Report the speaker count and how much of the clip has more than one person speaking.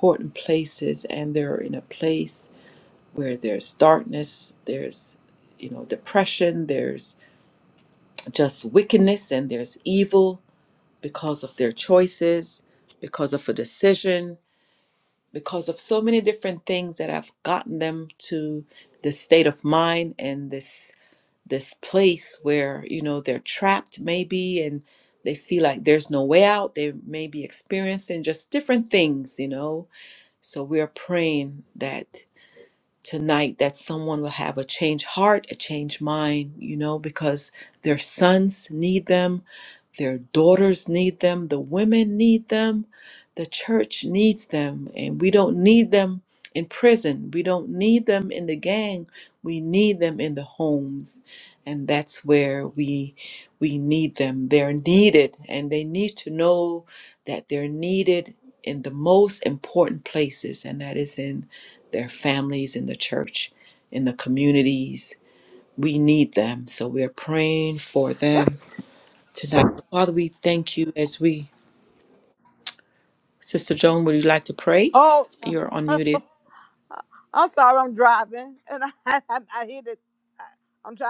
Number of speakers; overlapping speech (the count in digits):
2, no overlap